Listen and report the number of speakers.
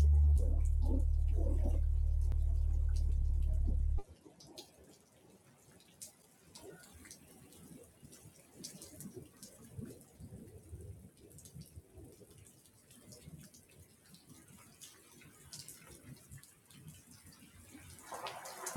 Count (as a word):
zero